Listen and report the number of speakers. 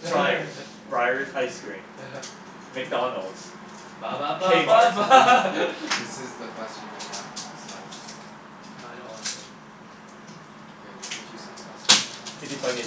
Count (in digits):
3